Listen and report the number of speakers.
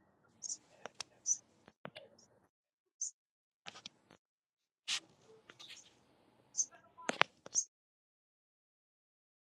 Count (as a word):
zero